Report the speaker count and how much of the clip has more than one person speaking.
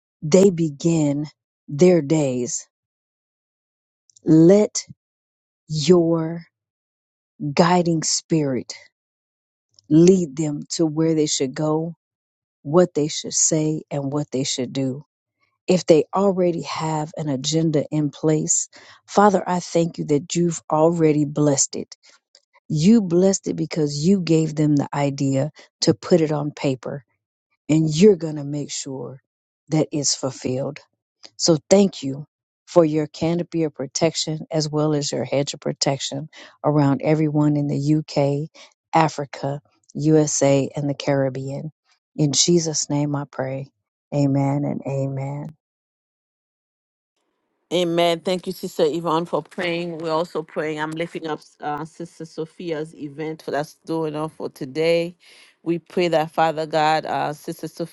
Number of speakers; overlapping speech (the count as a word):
two, no overlap